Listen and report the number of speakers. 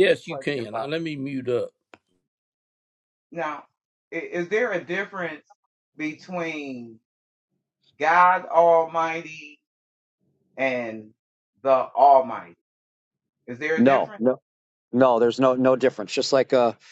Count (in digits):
3